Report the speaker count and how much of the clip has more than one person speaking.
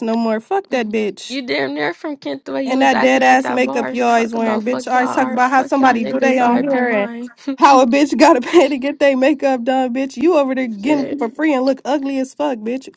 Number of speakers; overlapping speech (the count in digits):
2, about 39%